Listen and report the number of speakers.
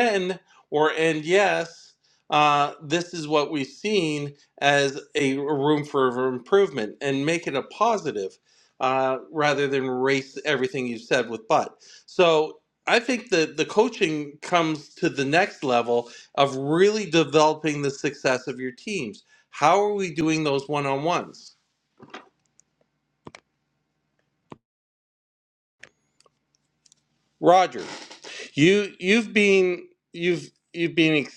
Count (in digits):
1